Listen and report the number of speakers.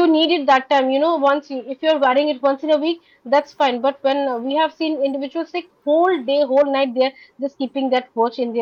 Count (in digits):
1